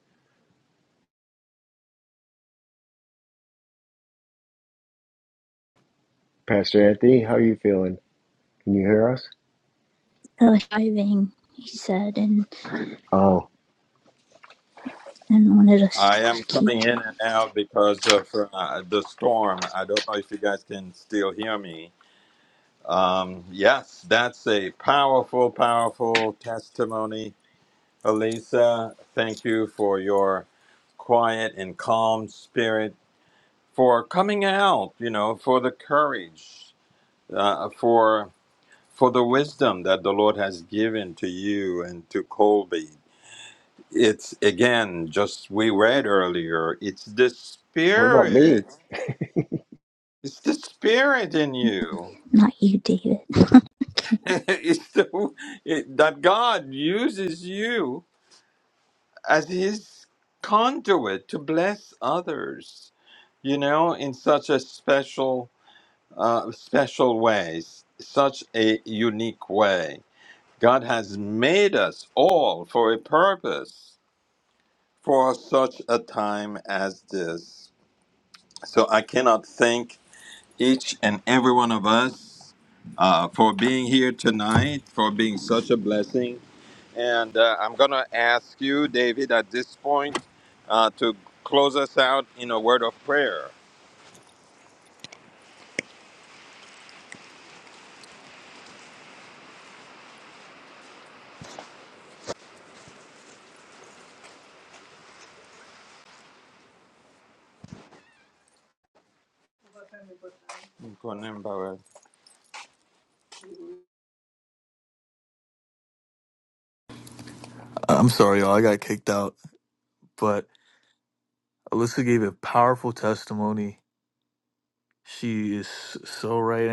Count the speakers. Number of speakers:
four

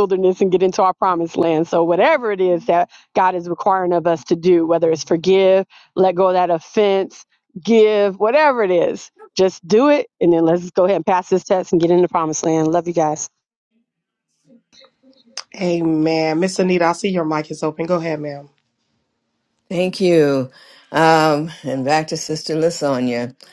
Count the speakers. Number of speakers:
three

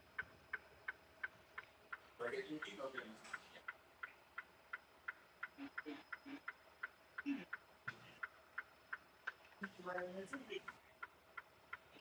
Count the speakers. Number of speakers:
zero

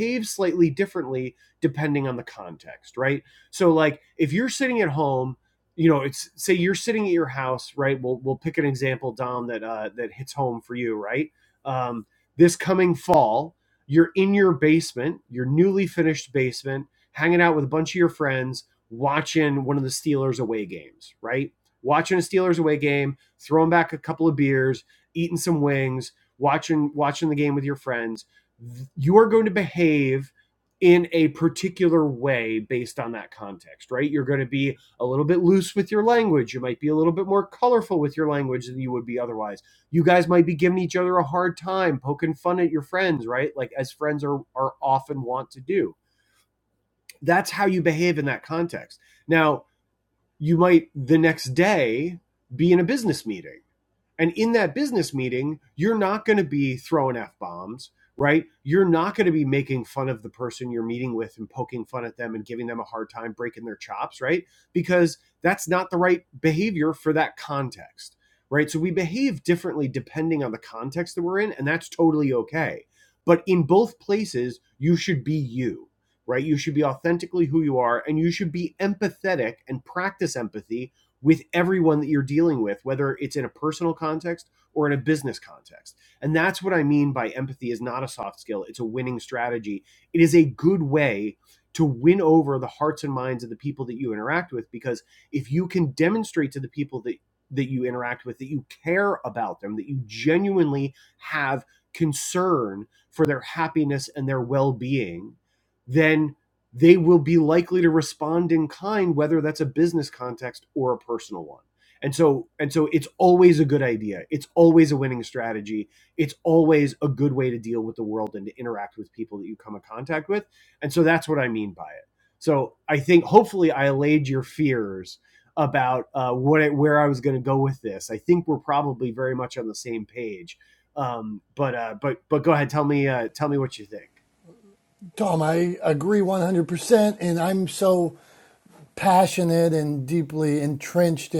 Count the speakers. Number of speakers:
two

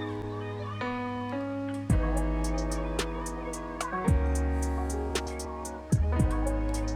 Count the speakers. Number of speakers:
zero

